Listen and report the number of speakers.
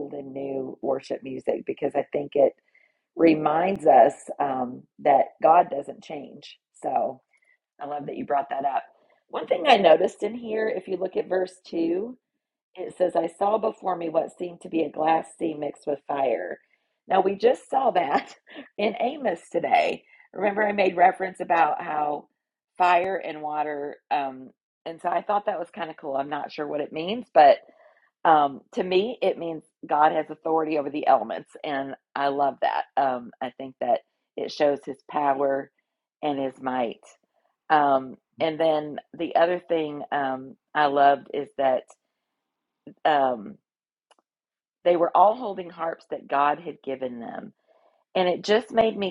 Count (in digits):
1